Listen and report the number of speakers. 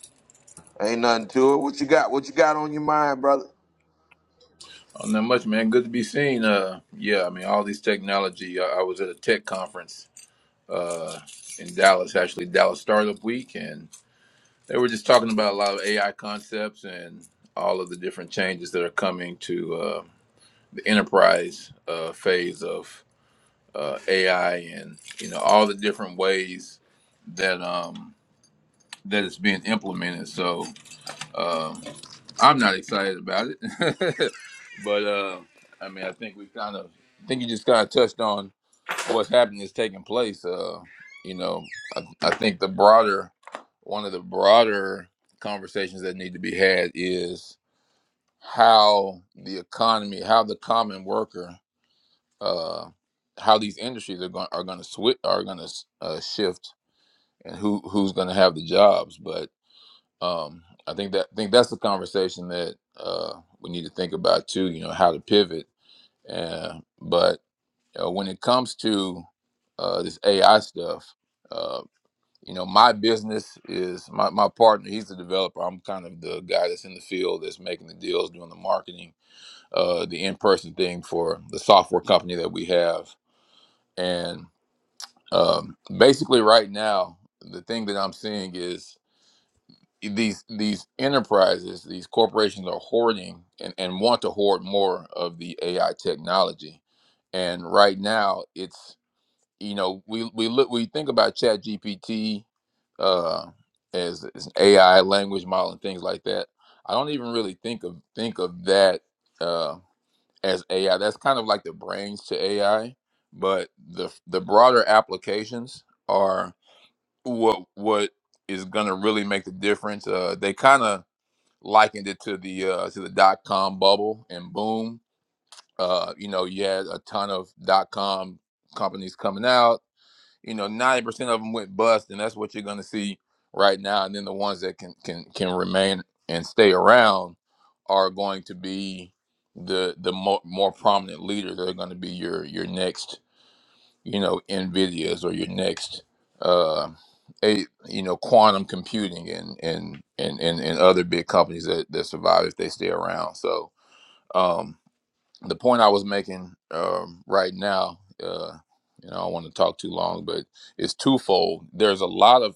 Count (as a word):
two